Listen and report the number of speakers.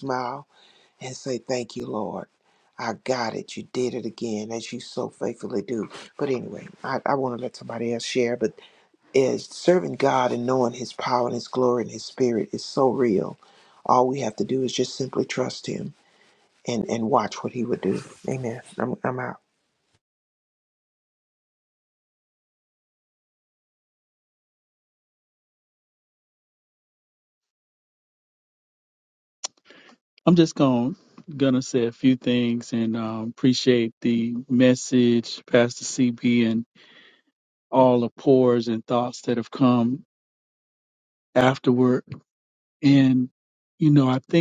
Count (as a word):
two